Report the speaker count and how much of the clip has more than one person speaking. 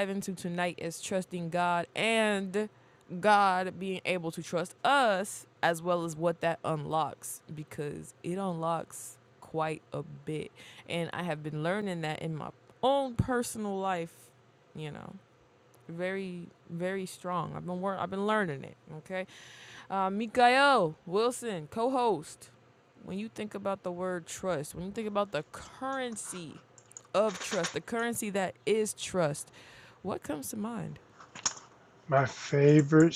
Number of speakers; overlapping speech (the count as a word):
two, no overlap